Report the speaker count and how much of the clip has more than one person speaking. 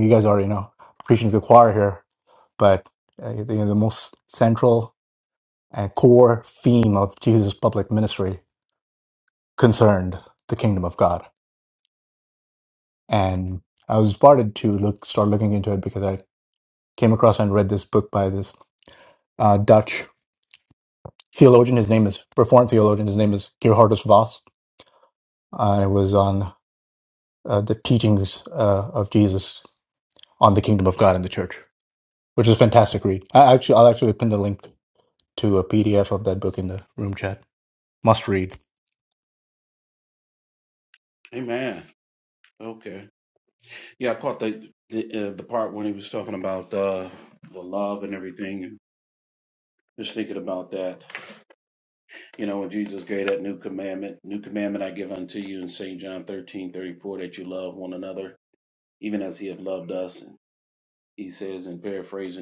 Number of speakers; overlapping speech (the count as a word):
two, no overlap